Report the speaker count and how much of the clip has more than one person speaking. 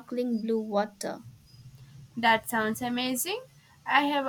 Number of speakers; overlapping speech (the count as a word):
two, no overlap